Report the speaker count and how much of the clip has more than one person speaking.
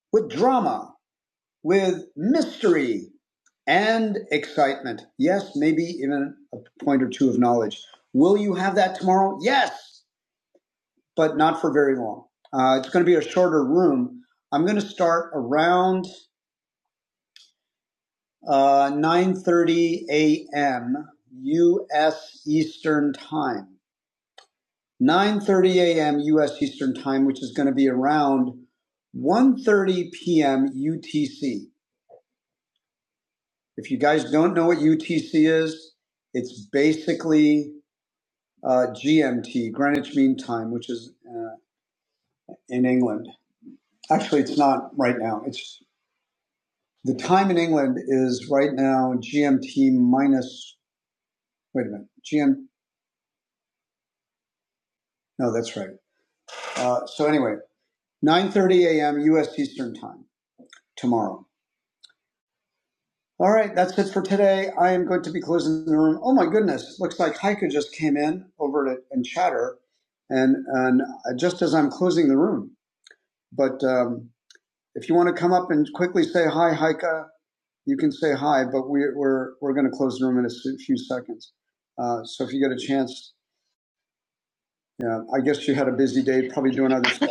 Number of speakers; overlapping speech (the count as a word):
one, no overlap